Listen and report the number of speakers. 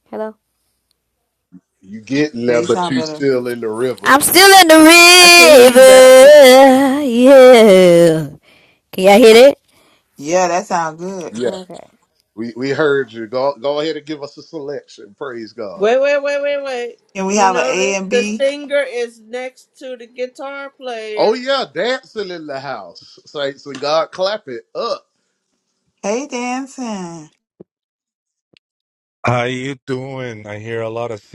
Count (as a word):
five